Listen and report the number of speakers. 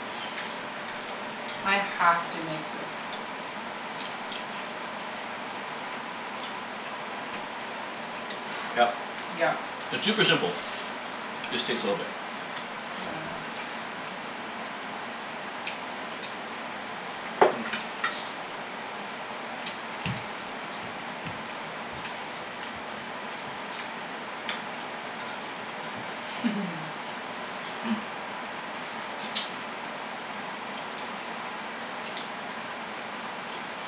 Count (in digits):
2